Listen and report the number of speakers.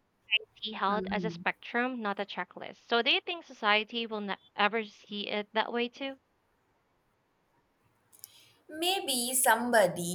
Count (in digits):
2